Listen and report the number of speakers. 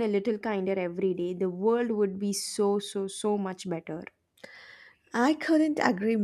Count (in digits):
2